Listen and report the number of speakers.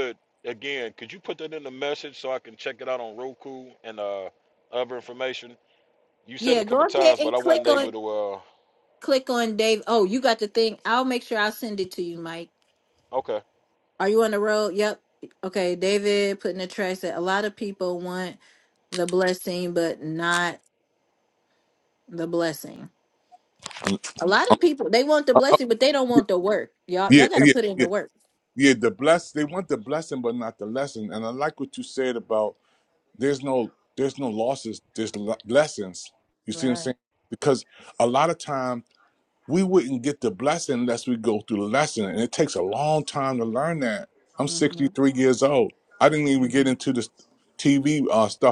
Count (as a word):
three